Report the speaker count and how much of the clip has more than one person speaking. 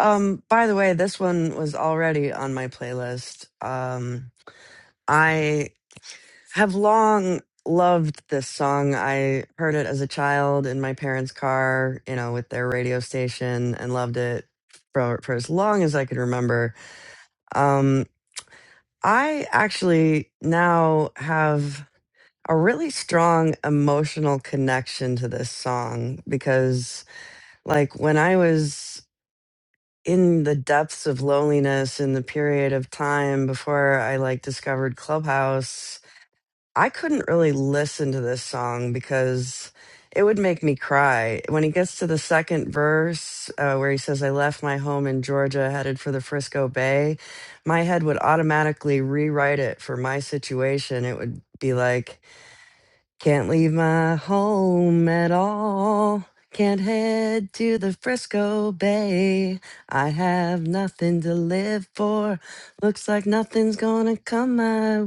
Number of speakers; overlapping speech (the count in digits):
1, no overlap